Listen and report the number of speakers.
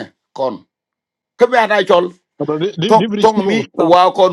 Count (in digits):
2